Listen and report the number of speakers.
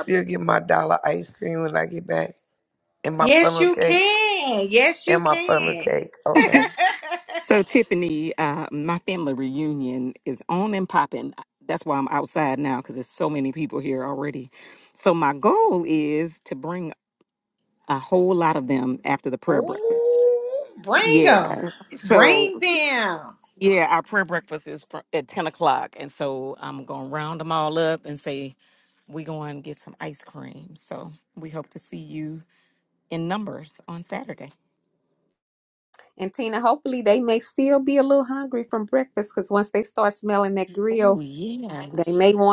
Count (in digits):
4